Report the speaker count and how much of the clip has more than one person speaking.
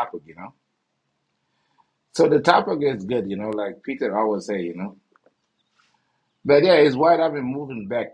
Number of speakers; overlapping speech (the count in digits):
1, no overlap